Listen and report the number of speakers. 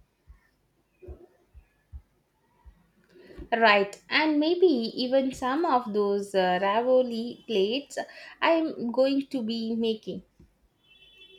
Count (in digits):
1